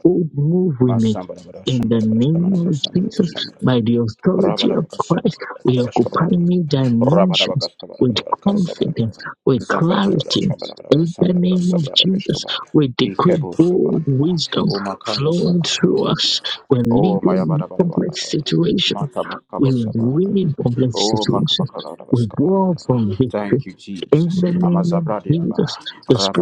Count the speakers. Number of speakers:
two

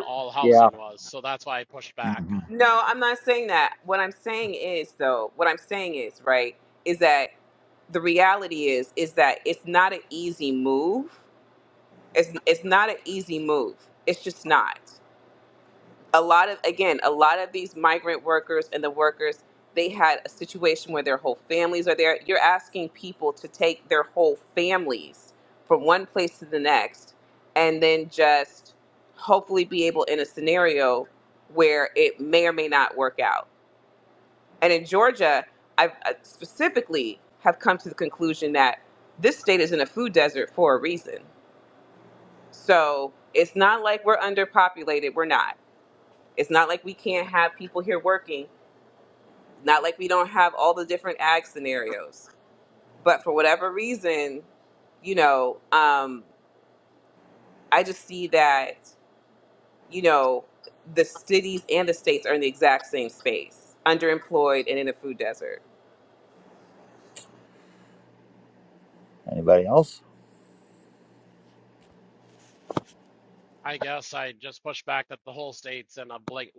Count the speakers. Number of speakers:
three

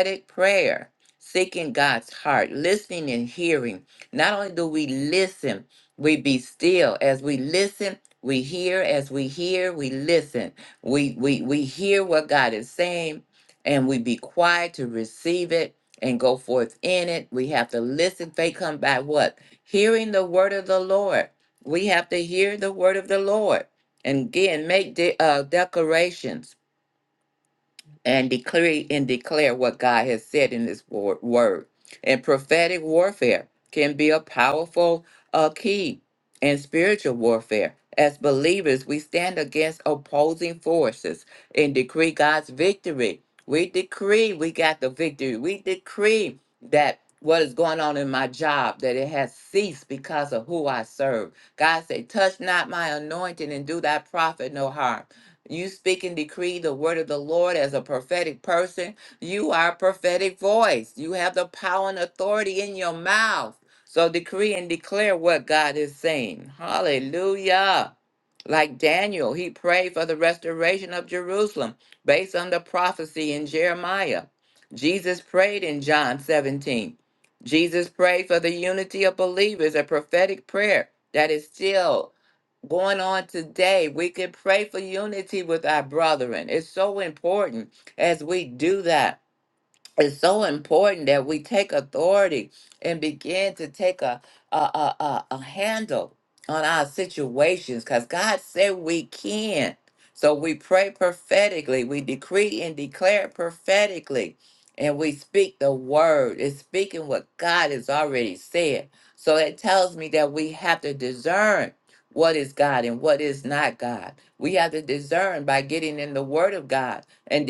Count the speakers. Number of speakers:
one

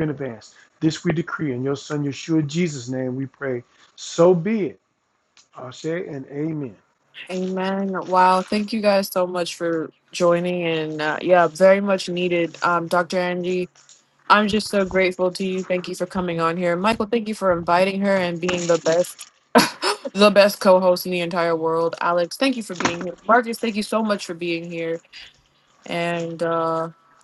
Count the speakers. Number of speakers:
two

